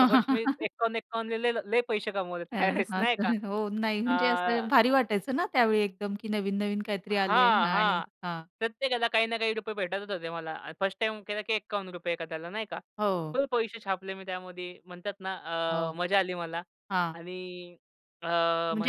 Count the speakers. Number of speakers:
two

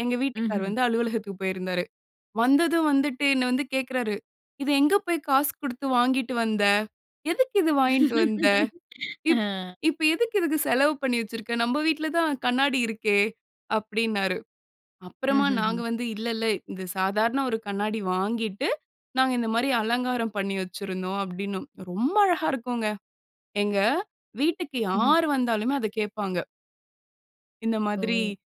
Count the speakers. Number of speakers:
two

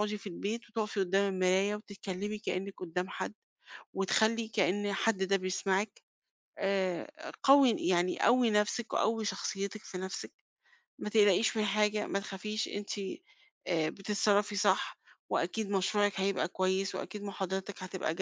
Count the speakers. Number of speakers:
one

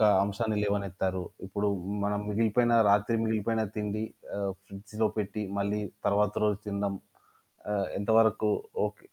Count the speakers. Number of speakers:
one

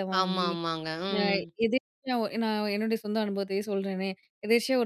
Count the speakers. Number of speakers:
two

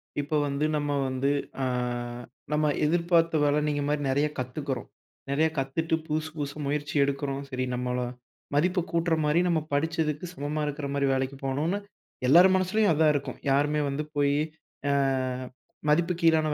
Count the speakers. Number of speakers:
one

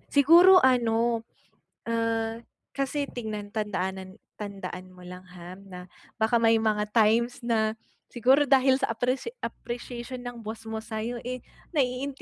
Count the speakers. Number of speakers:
one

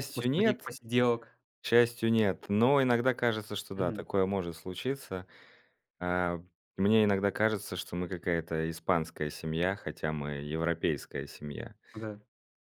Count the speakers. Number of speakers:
two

